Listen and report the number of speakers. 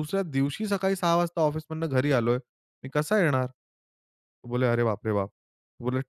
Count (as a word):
one